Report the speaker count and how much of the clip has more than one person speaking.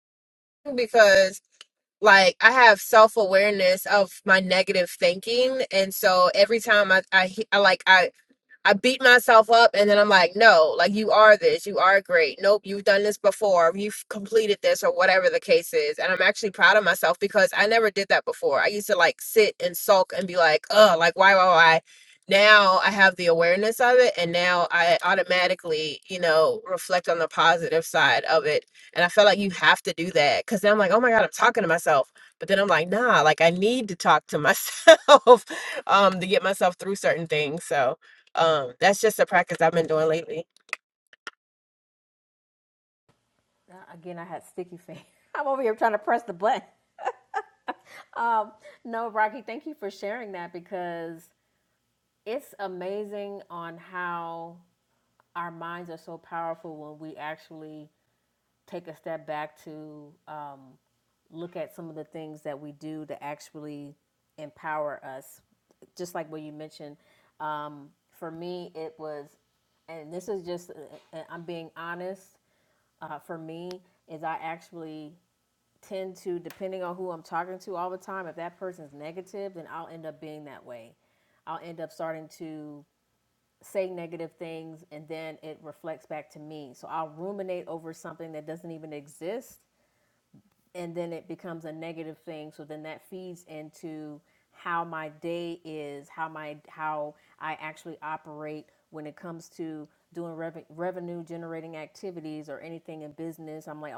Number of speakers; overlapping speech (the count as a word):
two, no overlap